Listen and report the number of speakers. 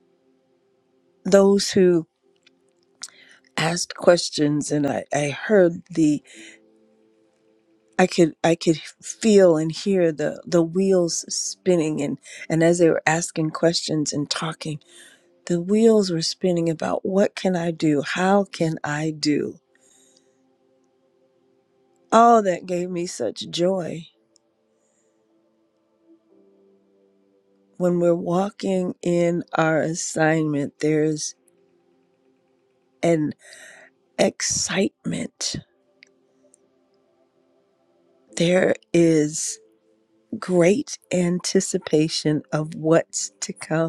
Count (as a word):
one